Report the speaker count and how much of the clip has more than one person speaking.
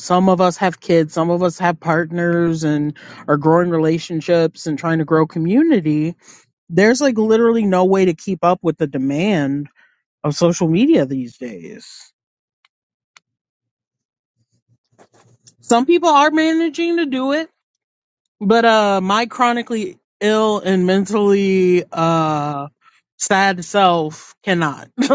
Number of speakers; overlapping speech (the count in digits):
1, no overlap